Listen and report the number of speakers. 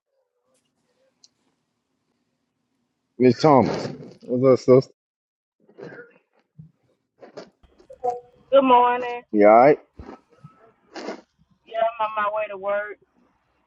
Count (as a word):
two